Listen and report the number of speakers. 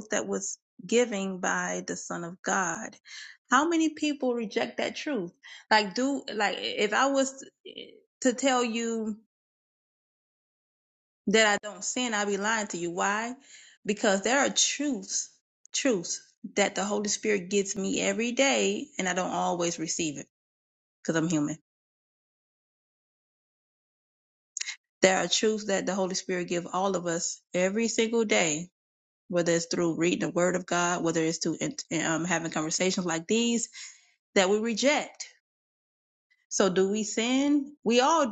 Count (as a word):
one